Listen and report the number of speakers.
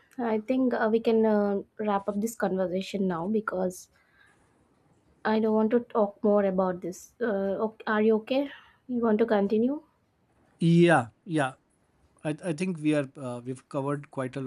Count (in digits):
2